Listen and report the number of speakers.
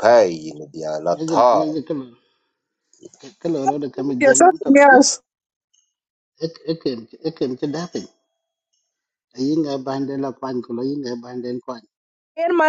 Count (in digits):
3